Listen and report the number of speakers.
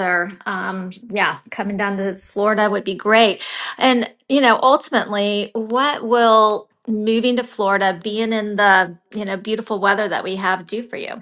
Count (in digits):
1